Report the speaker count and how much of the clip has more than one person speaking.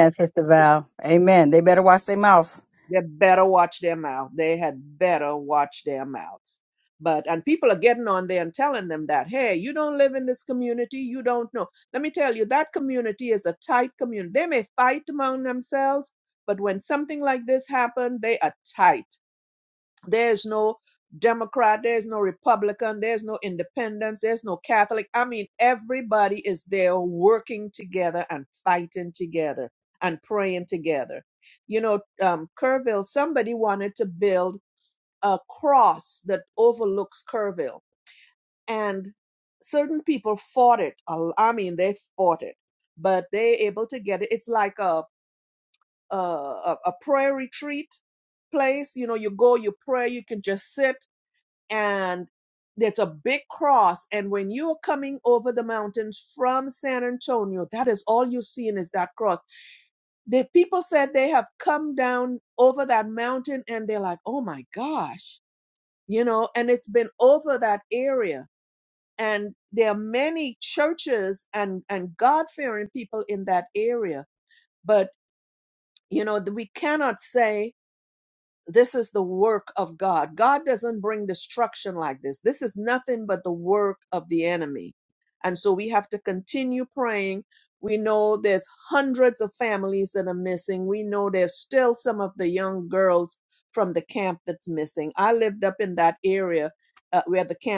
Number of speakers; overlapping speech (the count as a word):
two, no overlap